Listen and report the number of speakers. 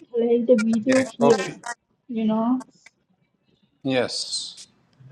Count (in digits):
2